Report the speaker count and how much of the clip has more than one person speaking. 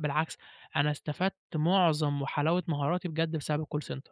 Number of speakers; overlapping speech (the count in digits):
1, no overlap